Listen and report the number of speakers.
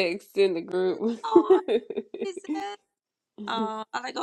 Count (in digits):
2